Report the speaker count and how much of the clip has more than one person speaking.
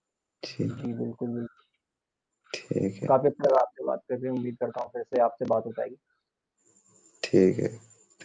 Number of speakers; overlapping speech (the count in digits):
2, about 1%